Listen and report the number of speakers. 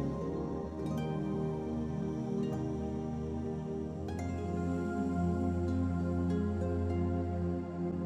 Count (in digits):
0